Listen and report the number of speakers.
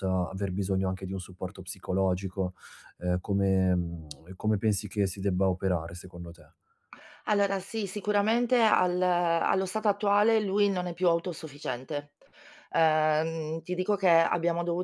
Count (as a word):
two